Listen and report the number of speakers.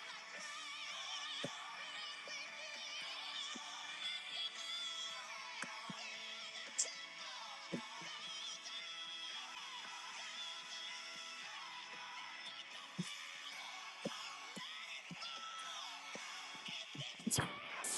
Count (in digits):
0